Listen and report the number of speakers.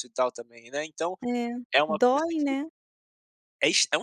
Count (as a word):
two